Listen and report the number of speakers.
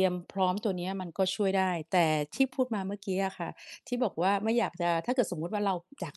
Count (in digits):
1